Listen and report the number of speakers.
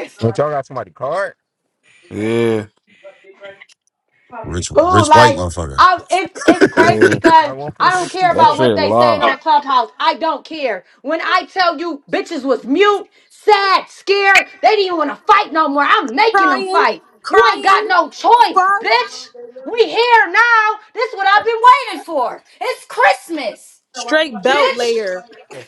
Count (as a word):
five